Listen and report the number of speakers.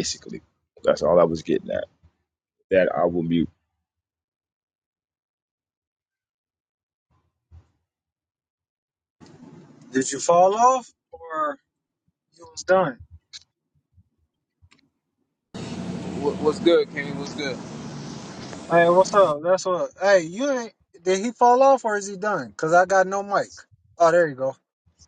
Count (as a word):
three